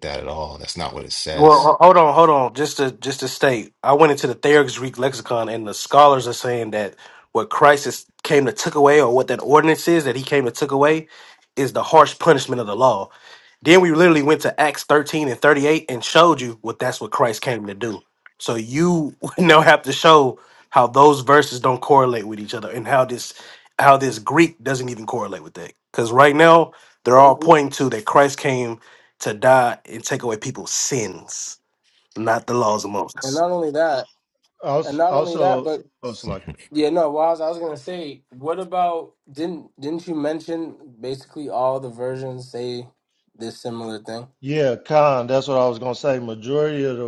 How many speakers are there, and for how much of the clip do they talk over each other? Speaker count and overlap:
4, about 2%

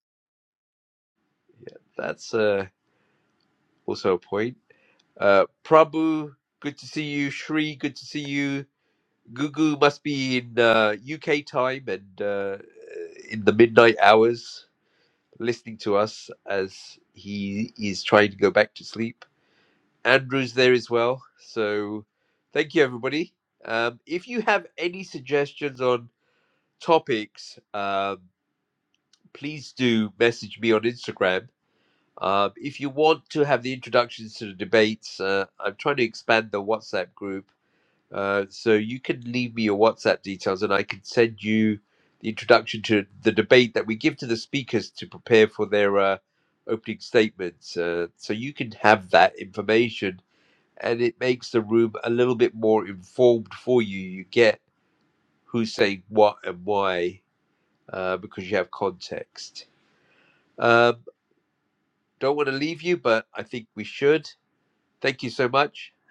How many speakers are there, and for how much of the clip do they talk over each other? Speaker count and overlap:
1, no overlap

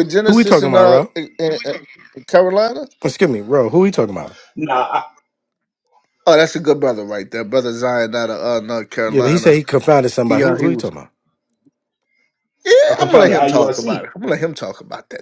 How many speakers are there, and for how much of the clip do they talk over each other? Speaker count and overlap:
3, about 19%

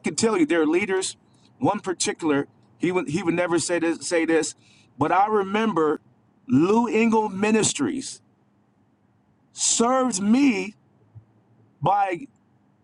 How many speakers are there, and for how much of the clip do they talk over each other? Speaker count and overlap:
1, no overlap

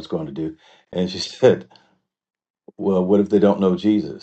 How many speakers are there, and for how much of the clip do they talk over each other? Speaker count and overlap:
1, no overlap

